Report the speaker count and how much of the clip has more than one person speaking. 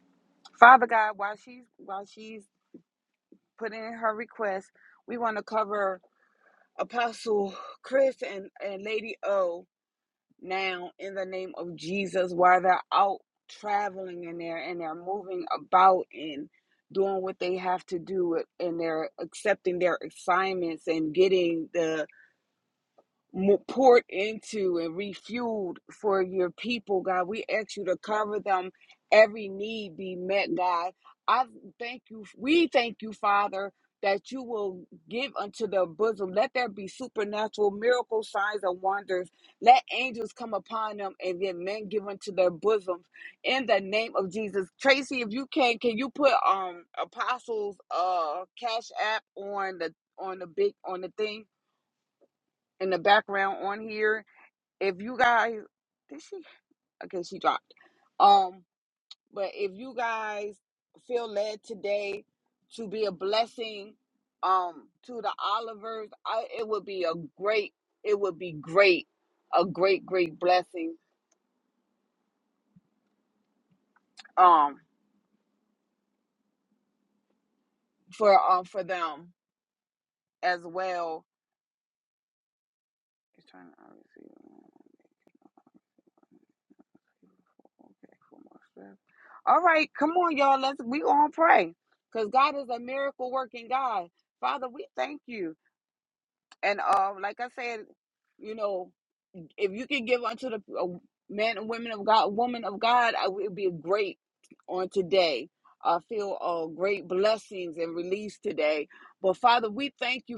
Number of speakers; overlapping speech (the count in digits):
1, no overlap